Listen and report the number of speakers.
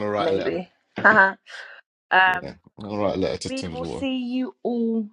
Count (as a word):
two